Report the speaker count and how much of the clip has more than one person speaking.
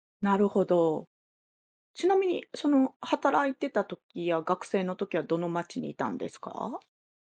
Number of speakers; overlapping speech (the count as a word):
one, no overlap